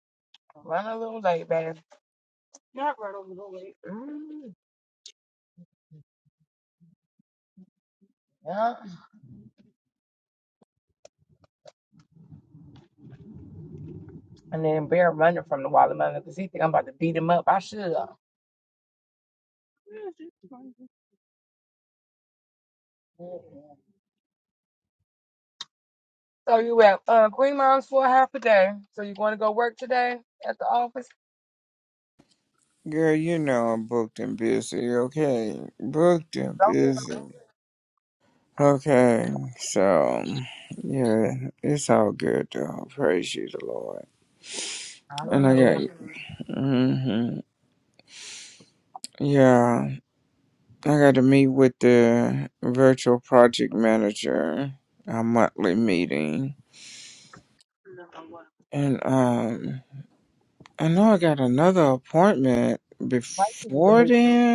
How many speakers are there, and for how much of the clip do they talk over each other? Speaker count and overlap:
two, about 3%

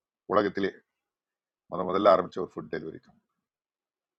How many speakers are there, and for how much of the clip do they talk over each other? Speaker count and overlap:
one, no overlap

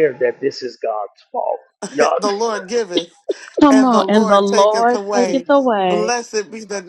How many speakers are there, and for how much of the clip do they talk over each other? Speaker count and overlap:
three, about 29%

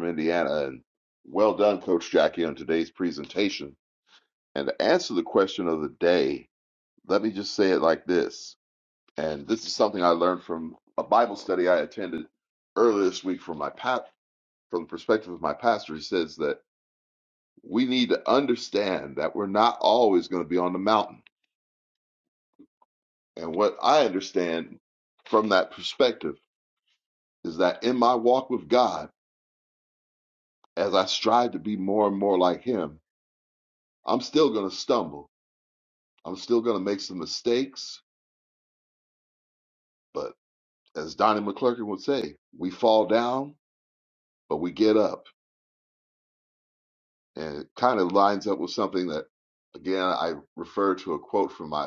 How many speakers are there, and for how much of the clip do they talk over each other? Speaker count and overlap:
one, no overlap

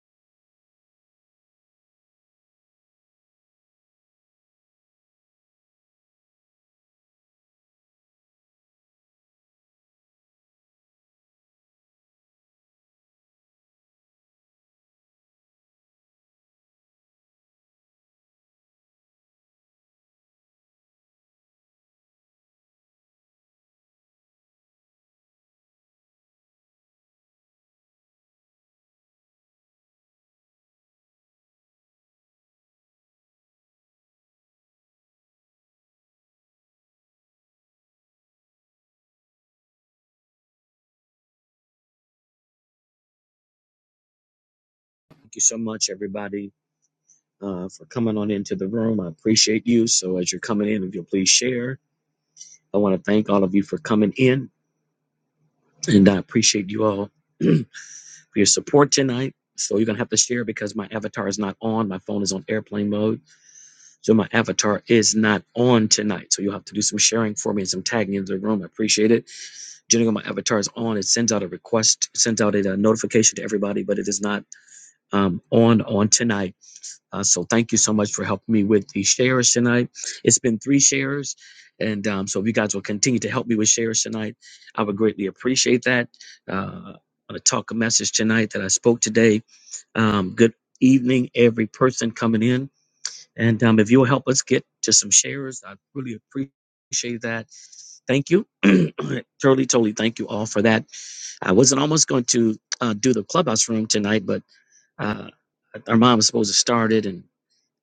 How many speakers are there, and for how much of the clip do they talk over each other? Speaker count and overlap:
one, no overlap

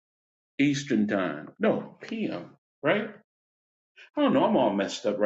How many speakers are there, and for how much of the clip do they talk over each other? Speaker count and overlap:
one, no overlap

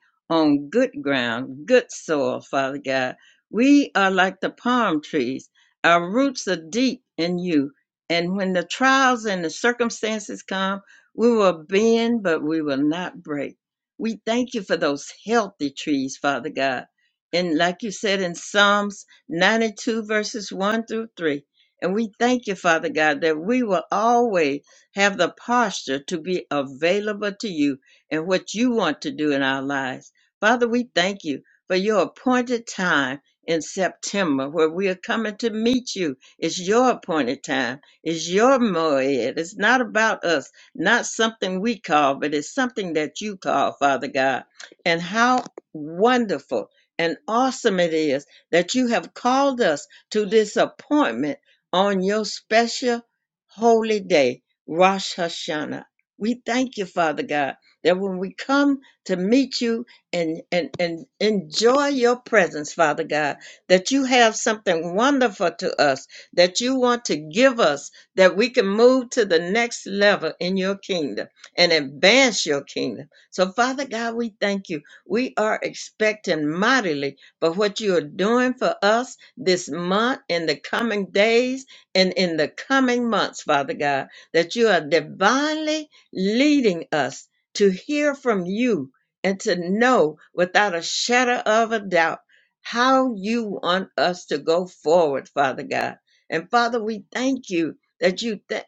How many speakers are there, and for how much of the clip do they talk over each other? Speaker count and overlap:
one, no overlap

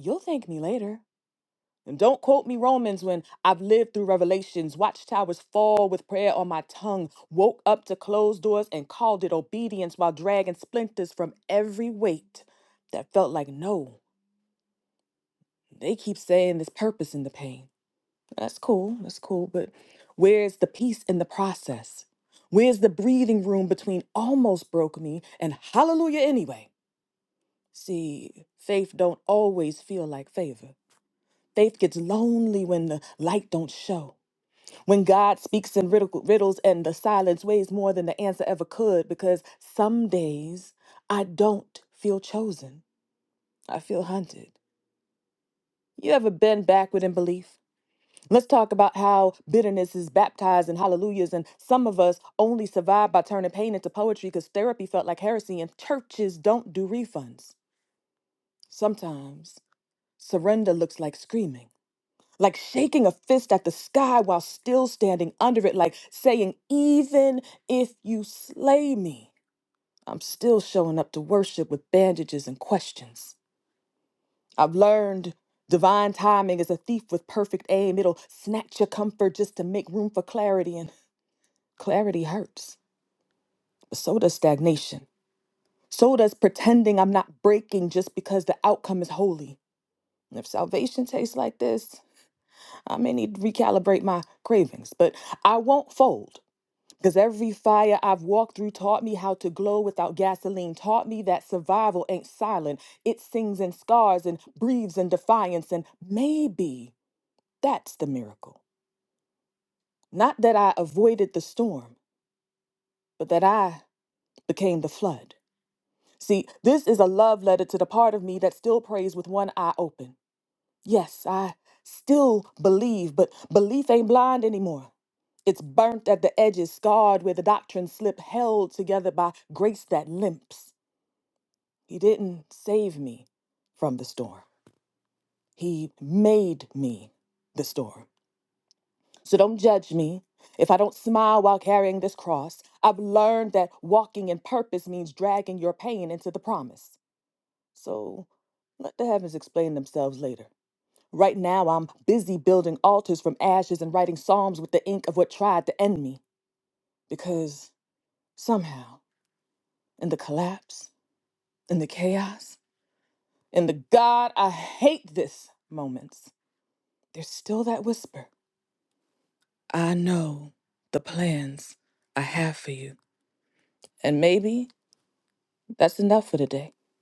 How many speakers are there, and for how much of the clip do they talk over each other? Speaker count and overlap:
one, no overlap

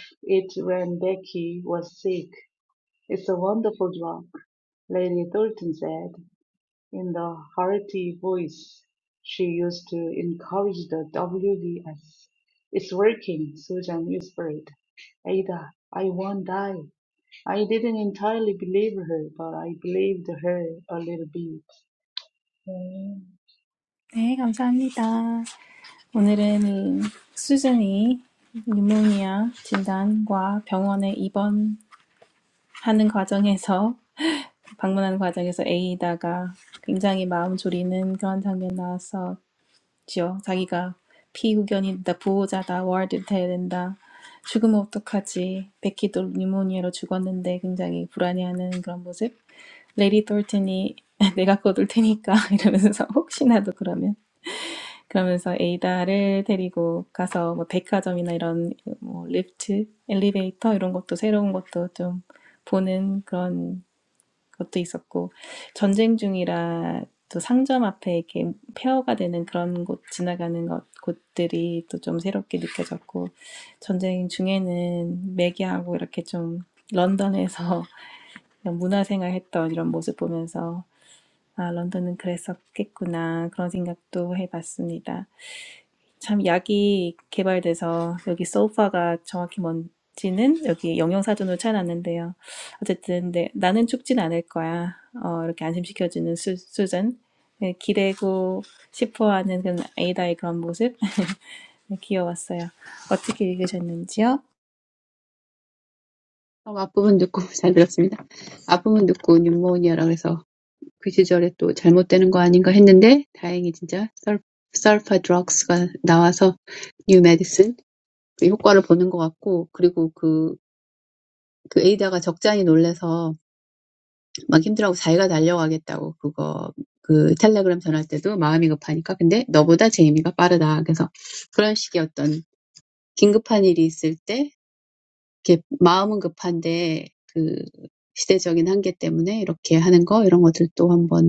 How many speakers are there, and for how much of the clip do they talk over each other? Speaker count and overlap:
three, no overlap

